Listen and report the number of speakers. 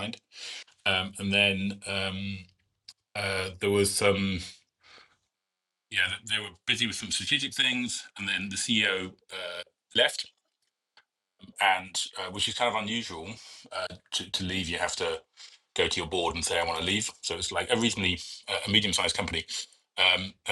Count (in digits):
1